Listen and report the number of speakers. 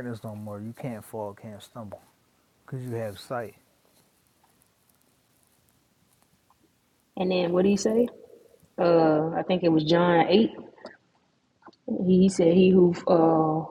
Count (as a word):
two